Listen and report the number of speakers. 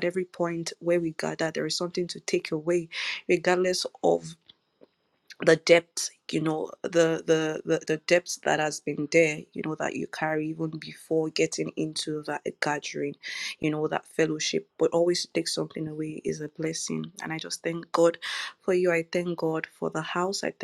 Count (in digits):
1